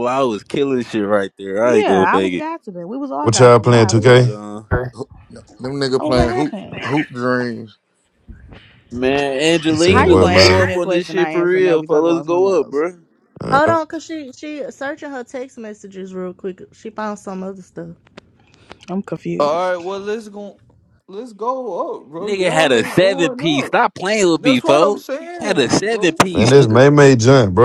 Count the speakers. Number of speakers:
6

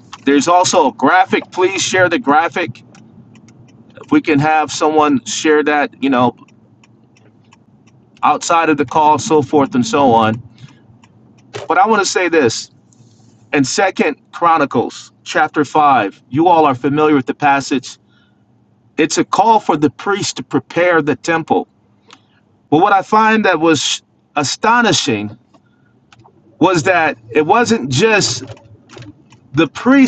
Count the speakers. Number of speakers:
1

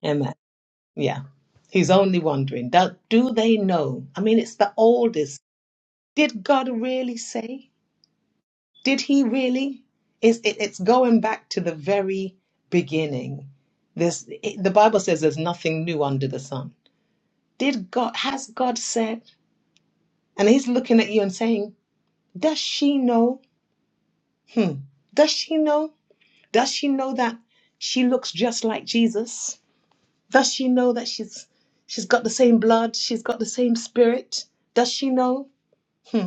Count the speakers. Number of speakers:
1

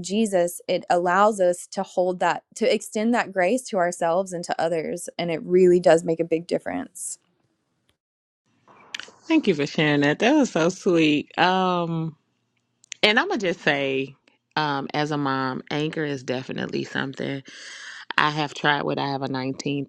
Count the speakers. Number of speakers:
2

